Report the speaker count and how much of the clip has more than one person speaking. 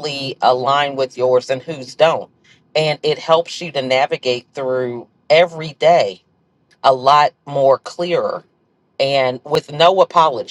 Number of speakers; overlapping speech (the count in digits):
1, no overlap